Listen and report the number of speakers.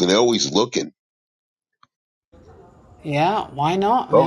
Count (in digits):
2